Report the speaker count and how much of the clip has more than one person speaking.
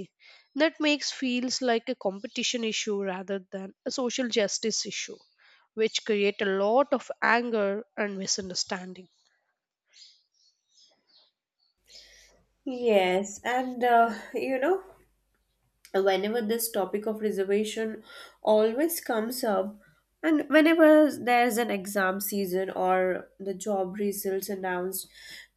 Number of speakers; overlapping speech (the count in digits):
2, no overlap